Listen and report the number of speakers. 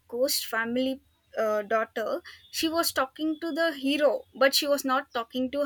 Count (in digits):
1